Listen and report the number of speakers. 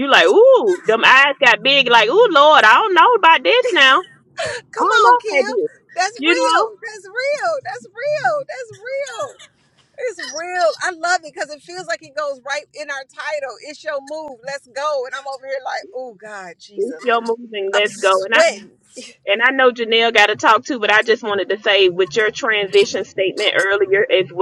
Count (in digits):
2